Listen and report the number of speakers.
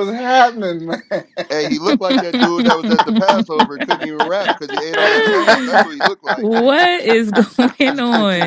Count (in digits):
3